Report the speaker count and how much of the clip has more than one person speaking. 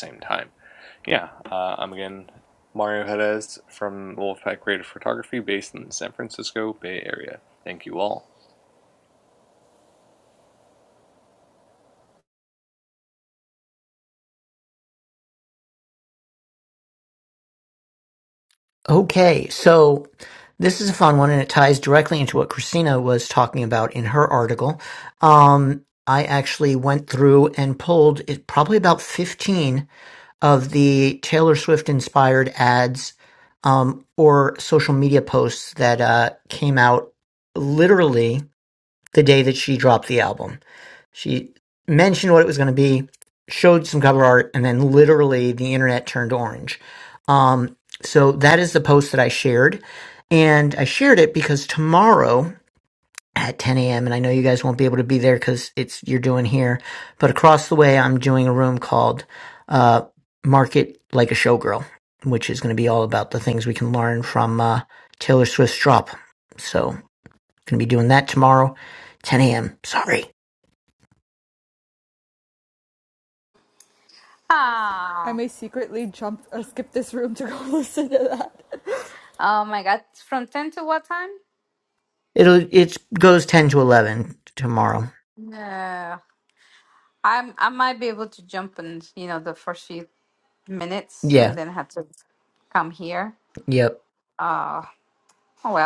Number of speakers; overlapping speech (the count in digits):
4, under 1%